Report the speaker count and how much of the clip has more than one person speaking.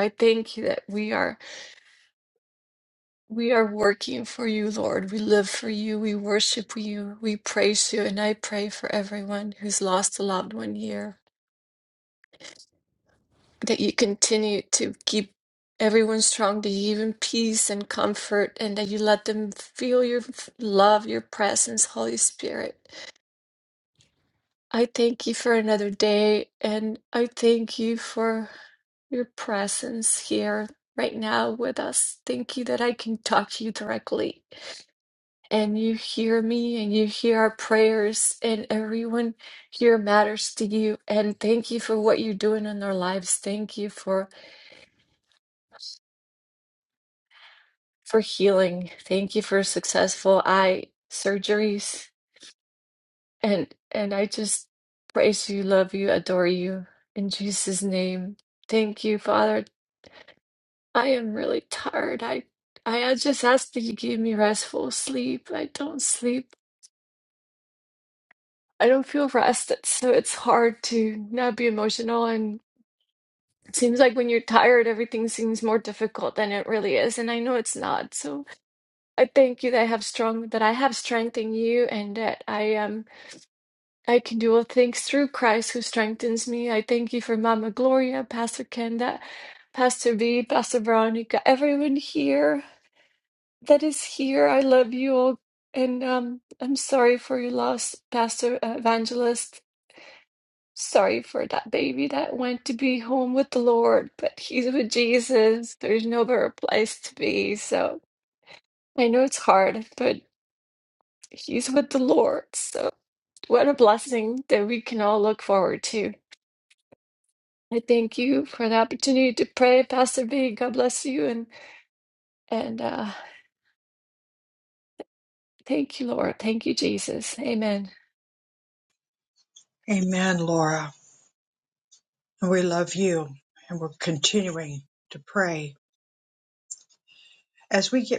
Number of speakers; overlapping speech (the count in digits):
2, no overlap